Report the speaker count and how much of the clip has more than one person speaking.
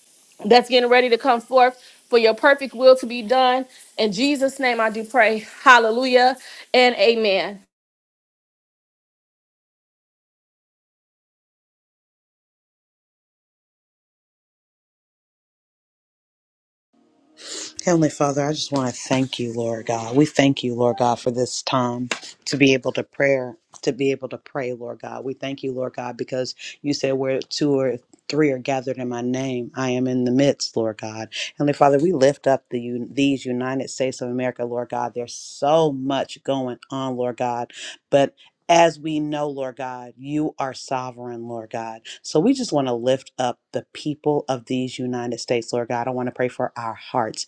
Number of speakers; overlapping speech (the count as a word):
two, no overlap